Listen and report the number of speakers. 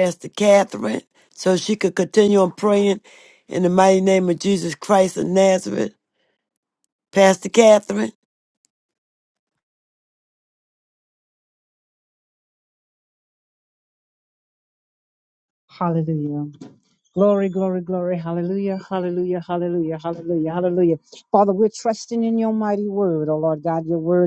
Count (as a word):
two